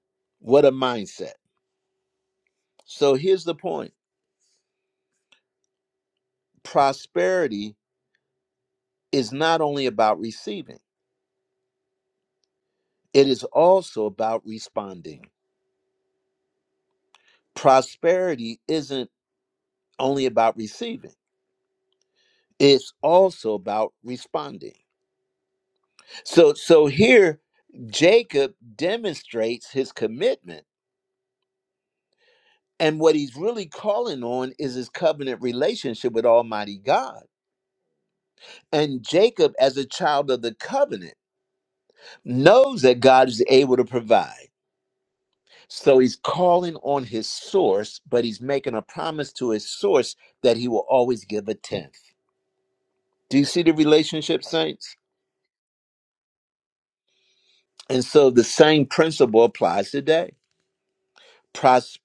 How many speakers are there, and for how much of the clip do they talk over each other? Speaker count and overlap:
1, no overlap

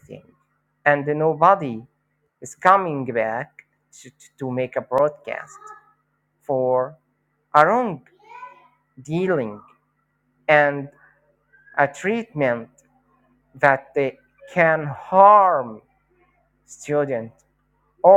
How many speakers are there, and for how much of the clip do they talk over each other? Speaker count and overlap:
1, no overlap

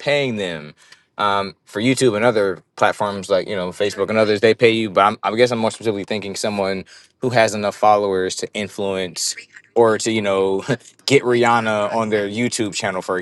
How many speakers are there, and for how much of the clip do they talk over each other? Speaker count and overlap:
1, no overlap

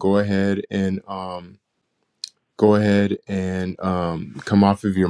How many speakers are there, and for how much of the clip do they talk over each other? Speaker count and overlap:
1, no overlap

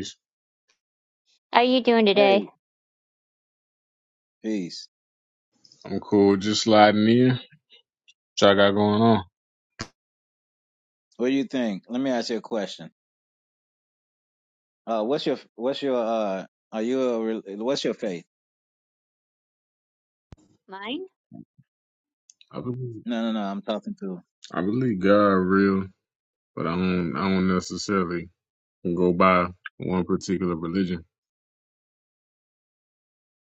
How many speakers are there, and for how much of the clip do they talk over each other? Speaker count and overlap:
3, about 1%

